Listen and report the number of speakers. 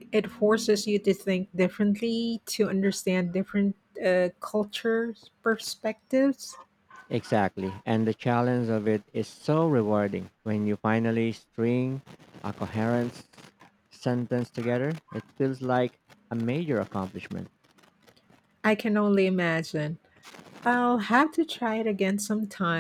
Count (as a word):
two